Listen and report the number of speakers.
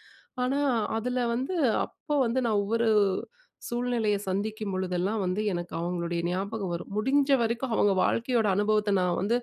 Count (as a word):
one